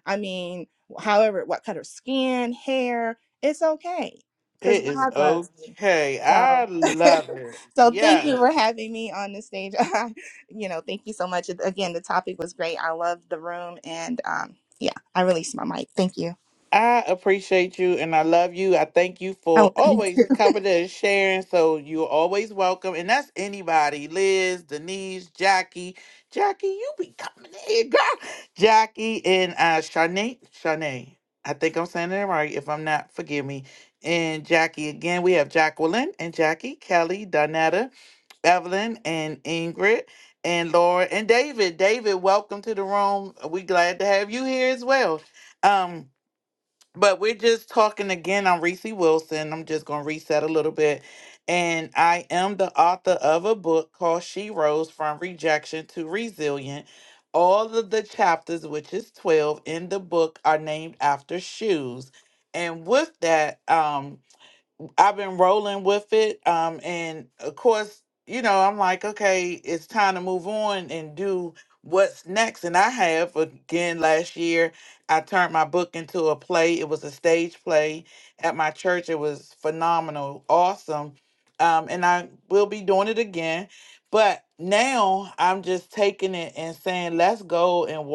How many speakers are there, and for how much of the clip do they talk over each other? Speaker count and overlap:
2, about 3%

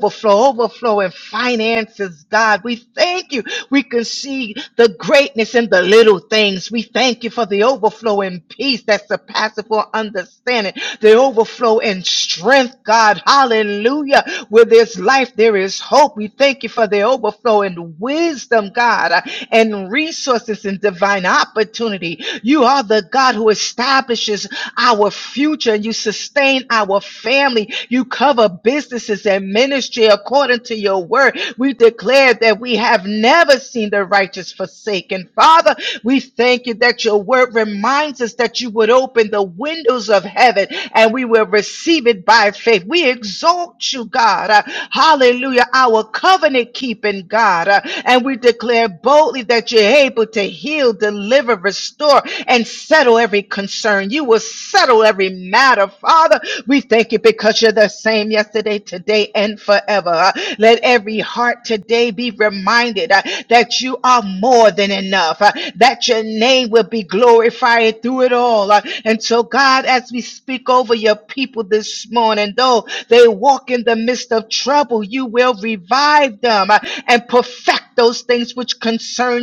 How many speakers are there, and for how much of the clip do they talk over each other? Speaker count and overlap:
1, no overlap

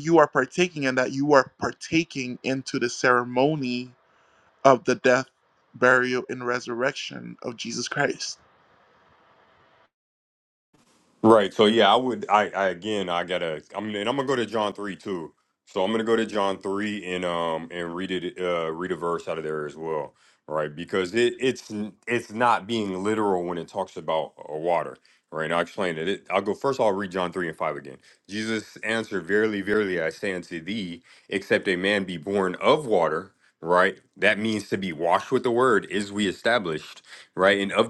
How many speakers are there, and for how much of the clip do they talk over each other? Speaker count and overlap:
2, no overlap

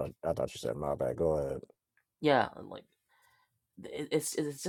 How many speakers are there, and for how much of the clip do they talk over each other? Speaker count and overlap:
2, no overlap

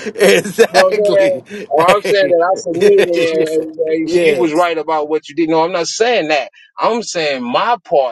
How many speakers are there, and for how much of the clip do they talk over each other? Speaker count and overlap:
2, about 23%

